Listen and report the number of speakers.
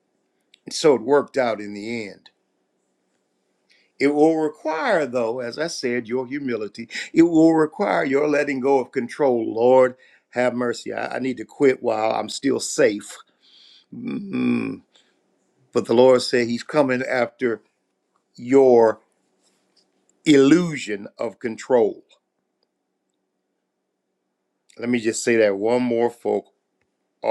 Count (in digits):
1